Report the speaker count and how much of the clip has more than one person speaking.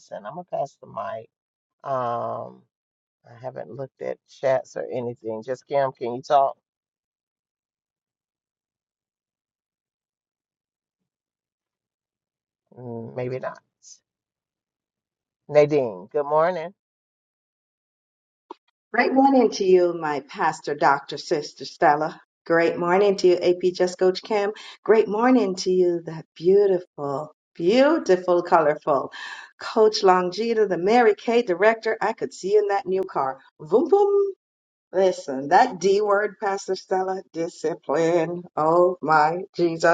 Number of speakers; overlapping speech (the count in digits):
2, no overlap